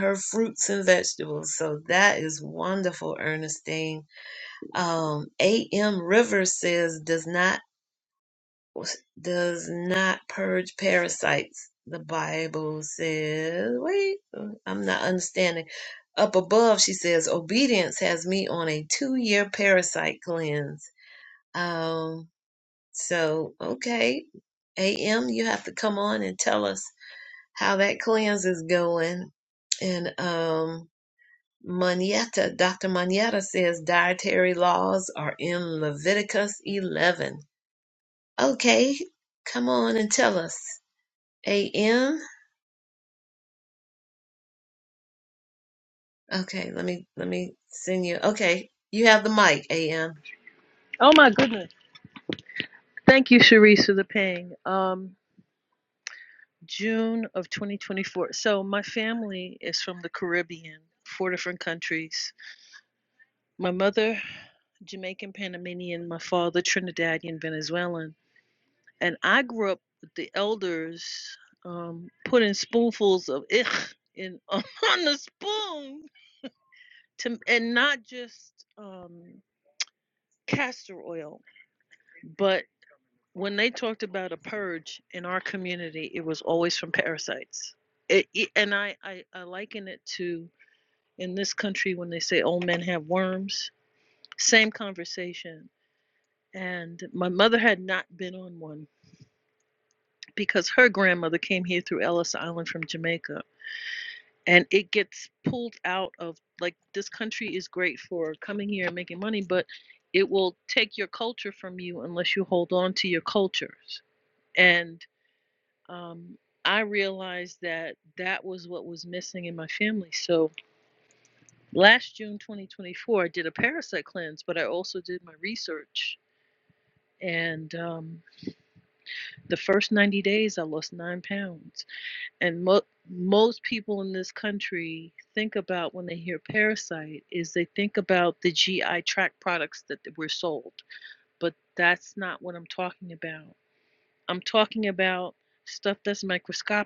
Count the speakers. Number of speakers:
2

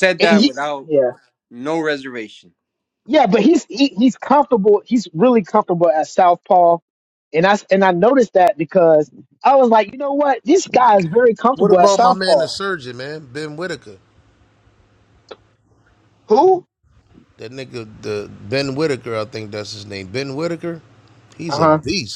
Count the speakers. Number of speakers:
3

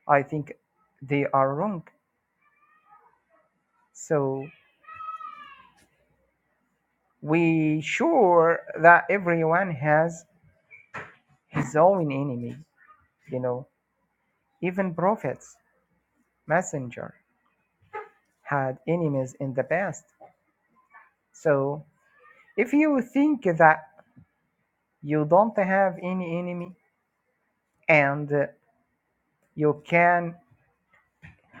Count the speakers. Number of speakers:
1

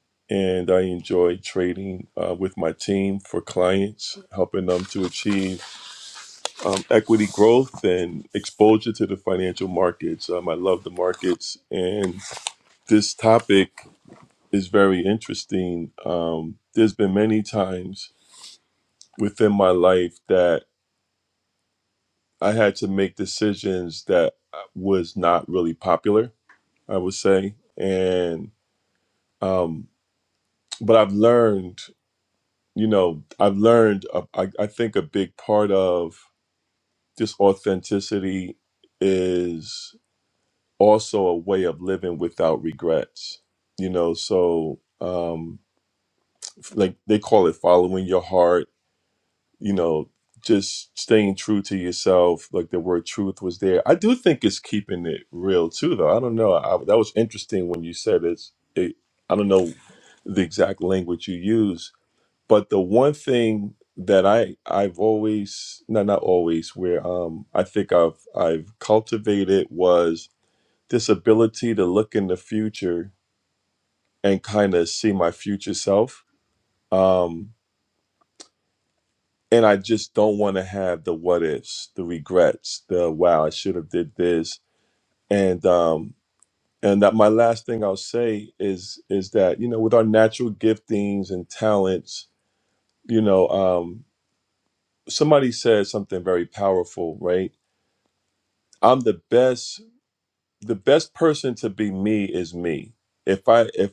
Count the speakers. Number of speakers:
1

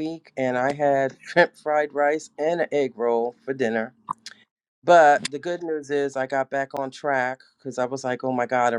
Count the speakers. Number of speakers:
1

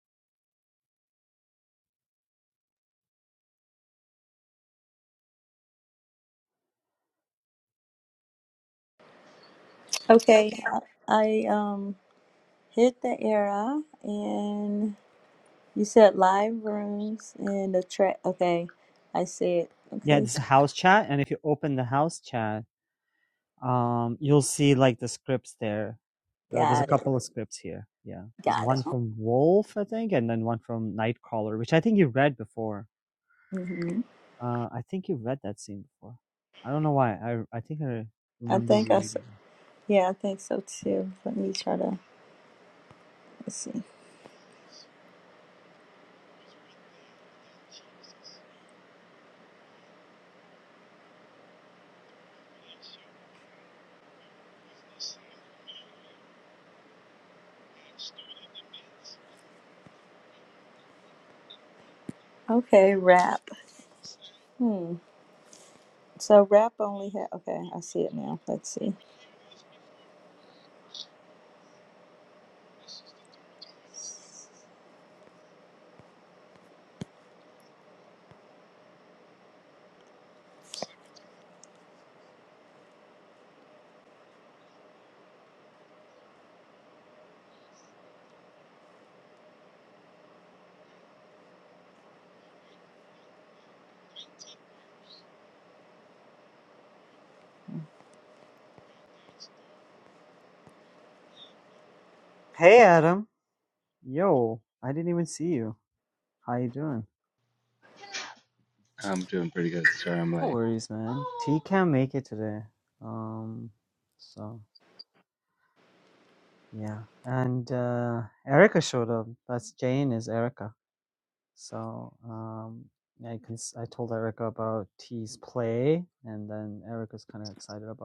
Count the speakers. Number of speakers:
3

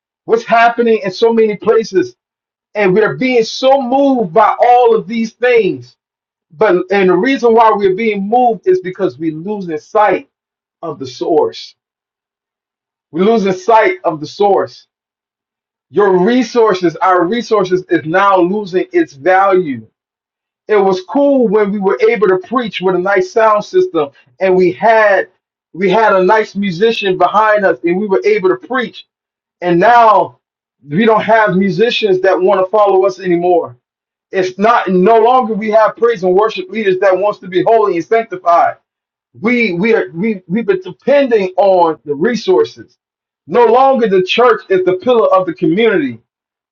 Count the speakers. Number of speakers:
1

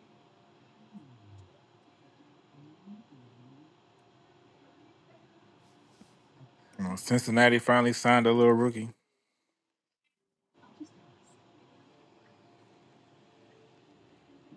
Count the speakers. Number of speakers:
1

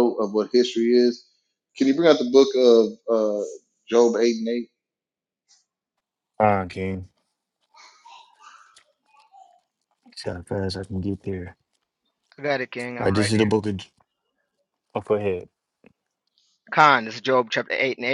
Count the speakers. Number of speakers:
3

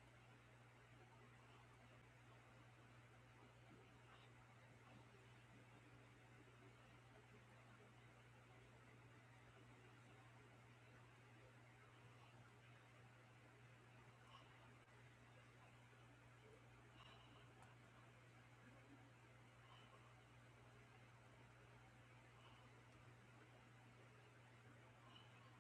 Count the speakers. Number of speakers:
0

